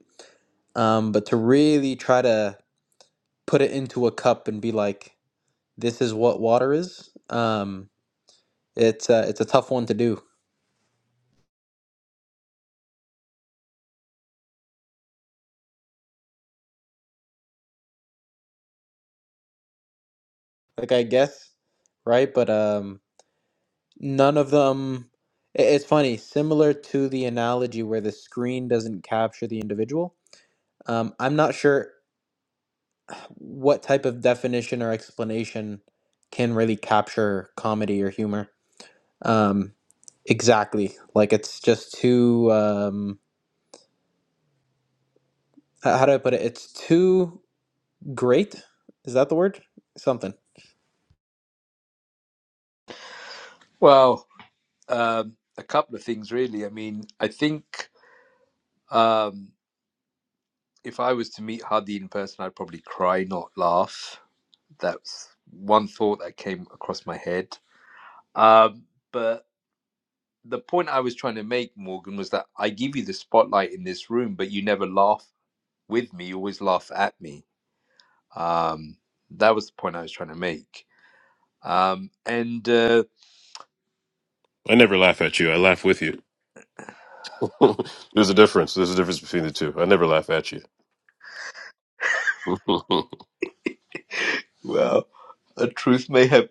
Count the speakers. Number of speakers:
three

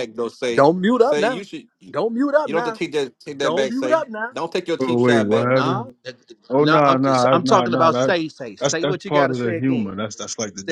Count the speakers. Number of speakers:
three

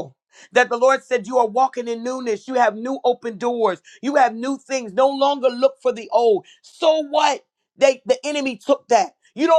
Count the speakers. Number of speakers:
one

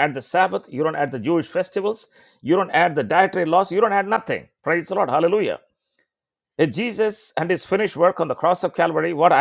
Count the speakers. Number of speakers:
one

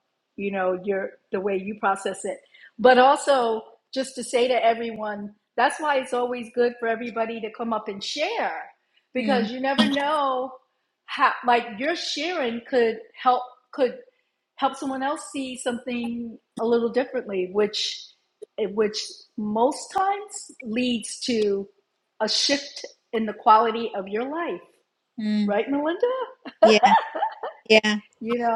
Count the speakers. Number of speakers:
two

